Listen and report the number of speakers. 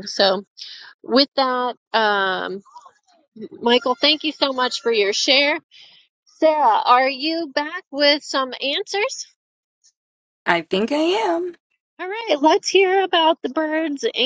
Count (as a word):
two